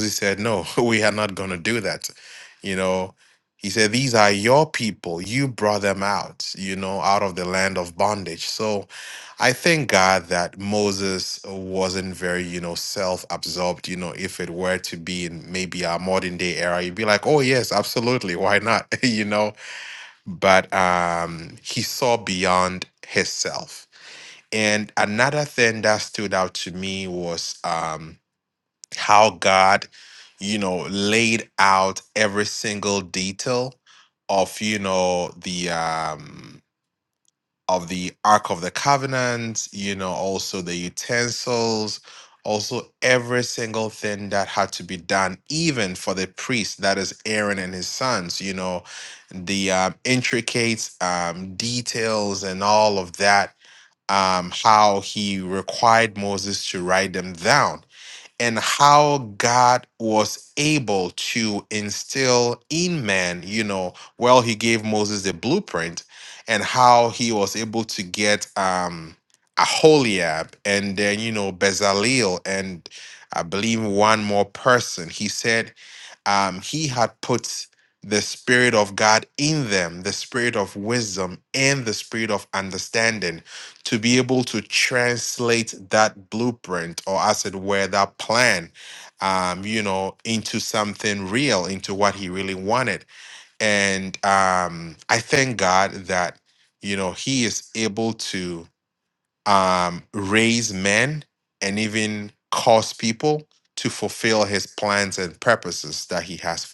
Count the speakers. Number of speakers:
one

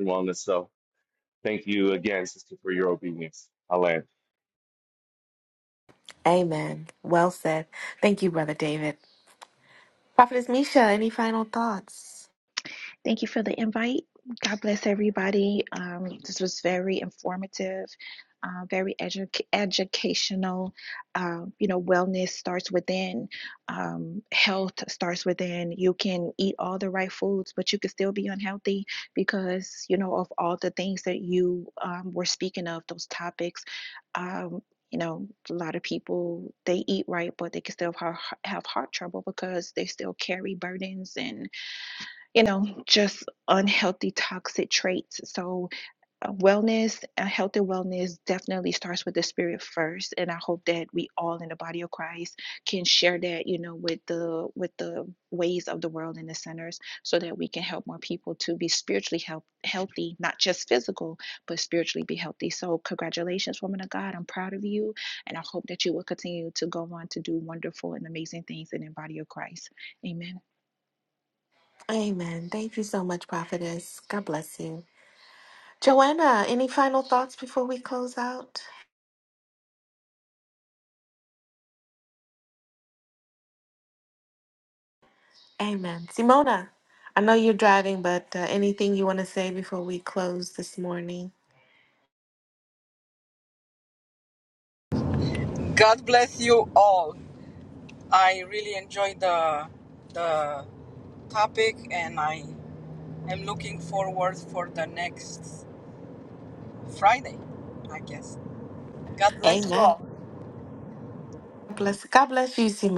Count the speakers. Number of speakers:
four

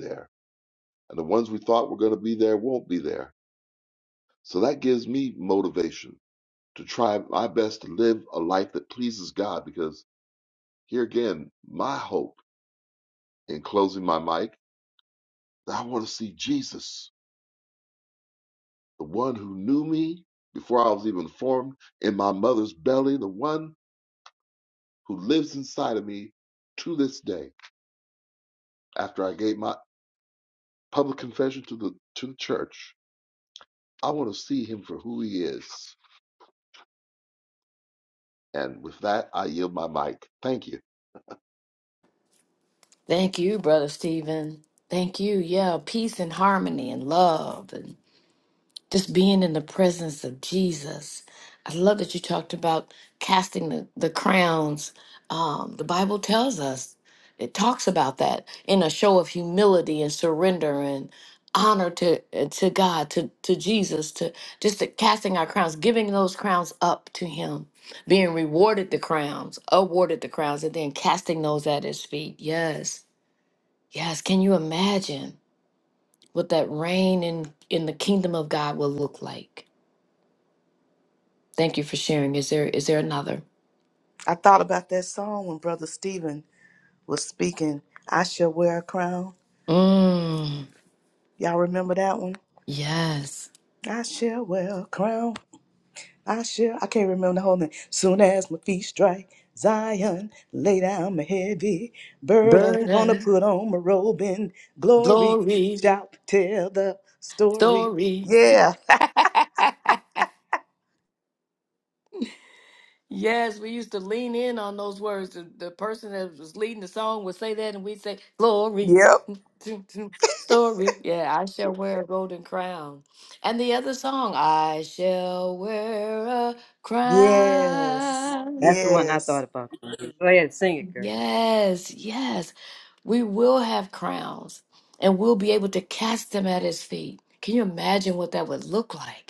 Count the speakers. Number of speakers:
four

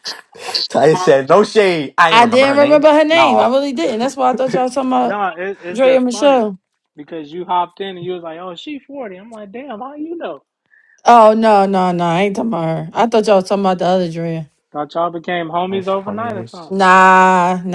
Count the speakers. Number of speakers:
three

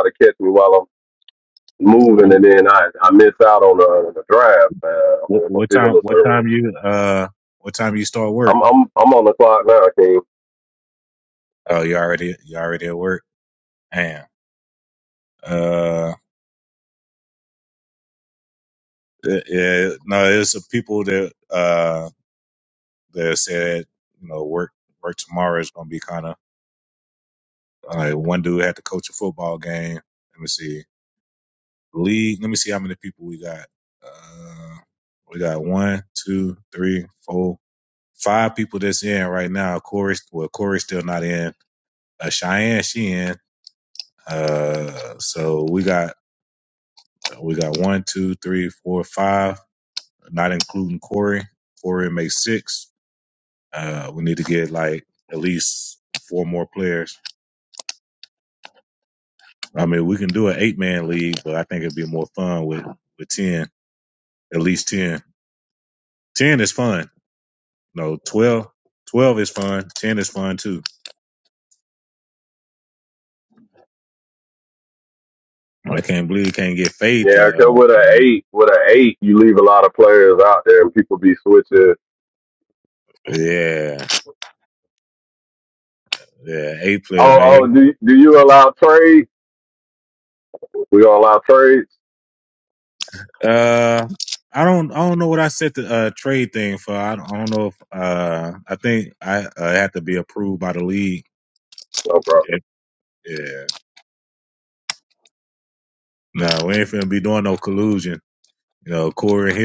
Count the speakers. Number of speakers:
two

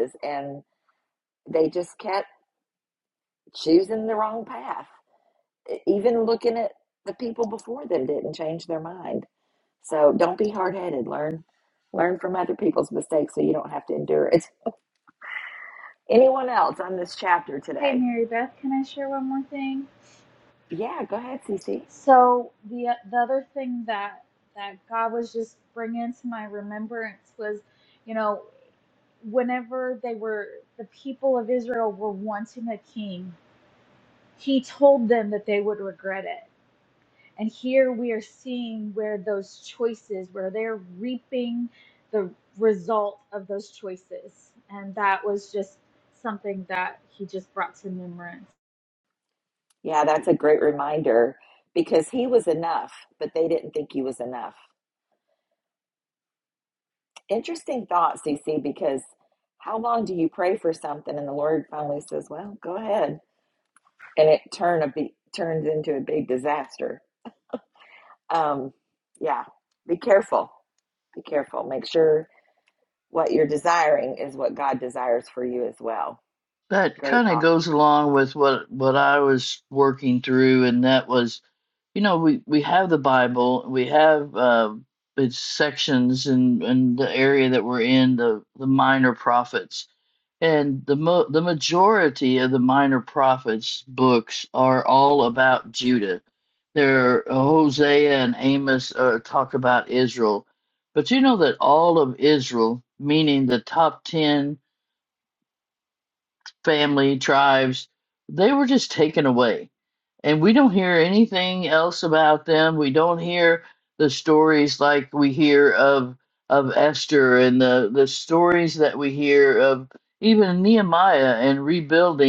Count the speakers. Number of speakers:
three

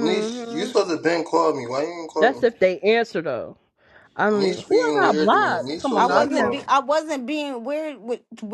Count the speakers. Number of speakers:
three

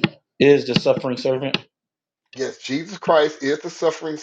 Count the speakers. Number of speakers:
two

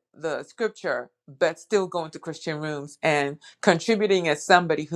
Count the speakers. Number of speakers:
one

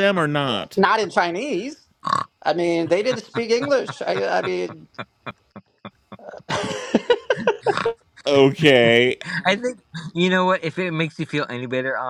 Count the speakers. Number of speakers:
three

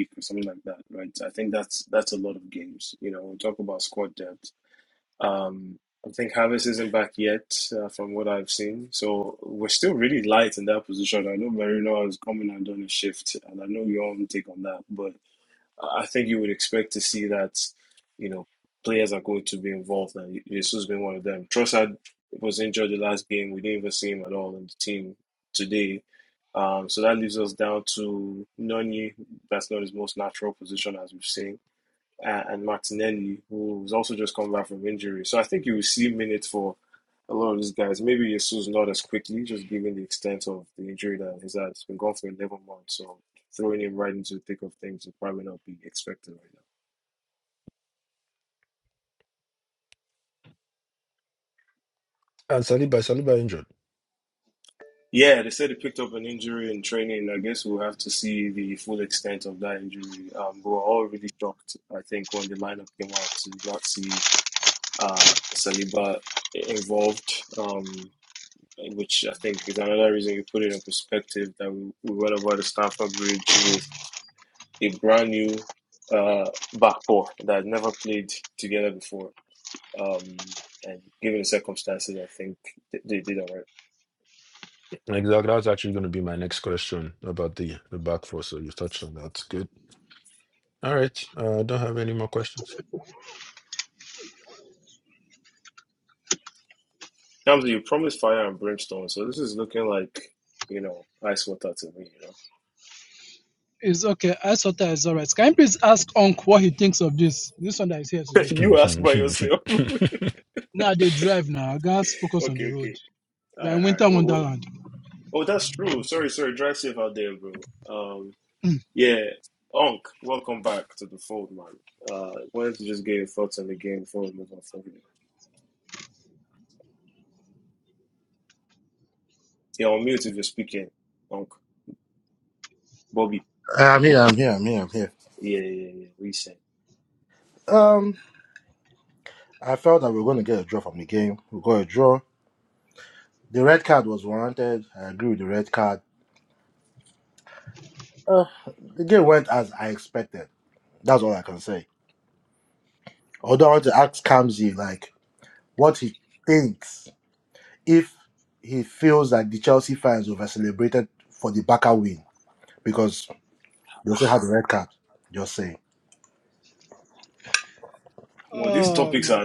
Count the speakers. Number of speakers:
four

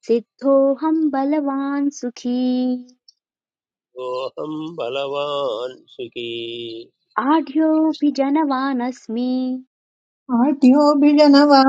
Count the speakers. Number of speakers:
three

